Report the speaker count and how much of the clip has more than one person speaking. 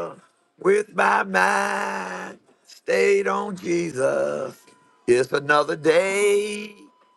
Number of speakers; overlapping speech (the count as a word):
one, no overlap